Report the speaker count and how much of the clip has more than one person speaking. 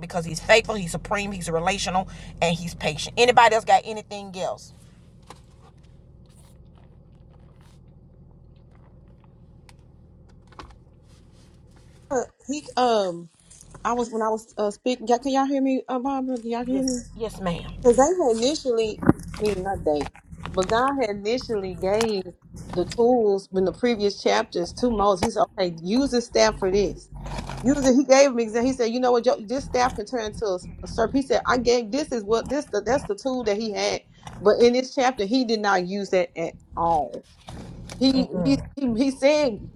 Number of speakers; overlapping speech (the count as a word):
two, about 2%